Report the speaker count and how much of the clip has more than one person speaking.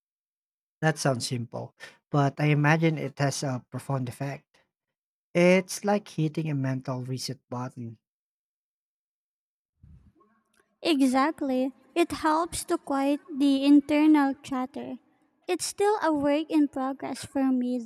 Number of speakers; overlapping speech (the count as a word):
two, no overlap